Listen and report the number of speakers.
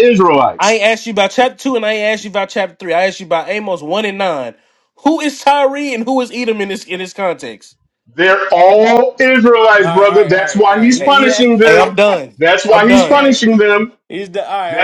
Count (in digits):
3